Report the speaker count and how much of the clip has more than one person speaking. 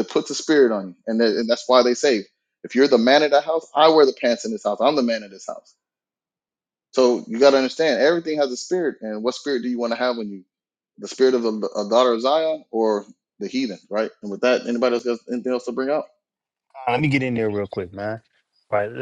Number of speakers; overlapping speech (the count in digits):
2, no overlap